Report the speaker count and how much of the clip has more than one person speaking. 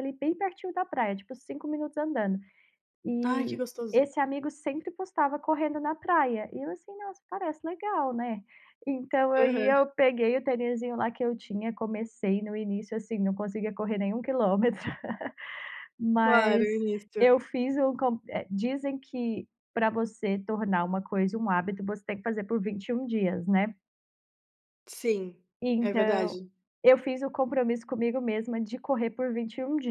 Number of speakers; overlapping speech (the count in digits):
2, about 7%